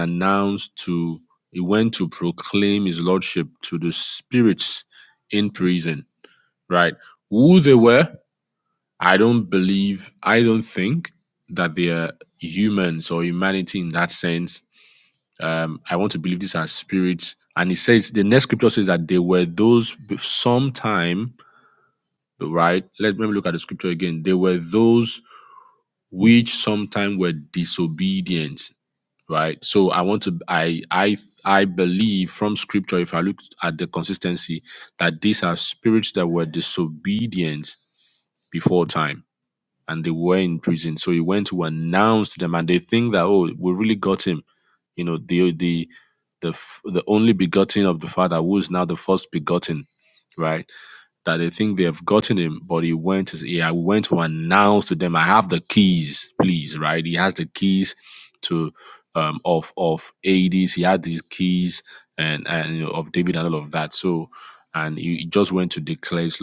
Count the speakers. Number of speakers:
1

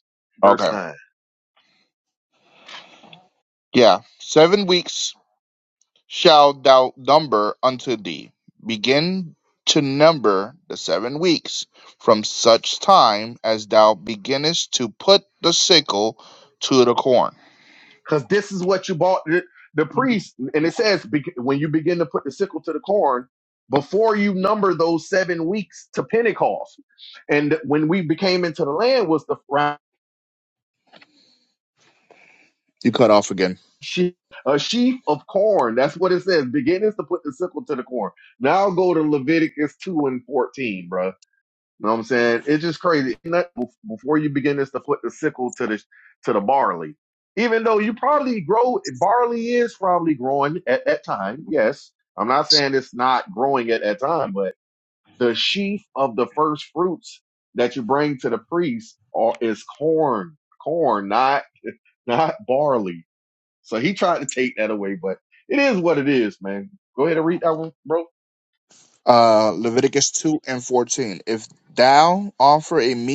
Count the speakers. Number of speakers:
2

